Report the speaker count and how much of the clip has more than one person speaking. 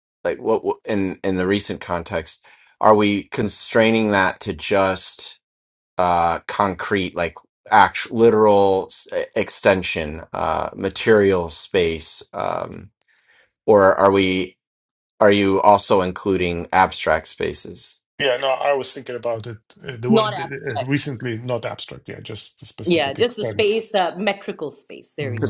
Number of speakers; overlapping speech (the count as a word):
three, about 8%